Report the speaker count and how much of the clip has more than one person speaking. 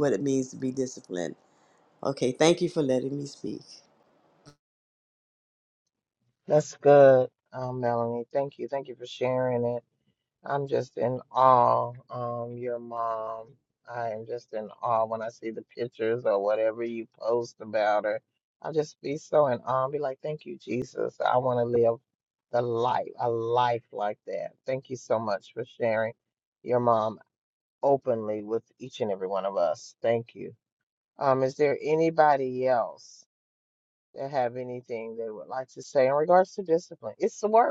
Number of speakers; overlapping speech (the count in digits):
2, no overlap